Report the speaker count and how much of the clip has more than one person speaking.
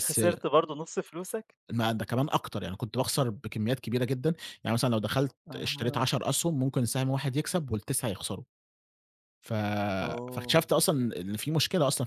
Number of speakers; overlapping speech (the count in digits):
2, about 9%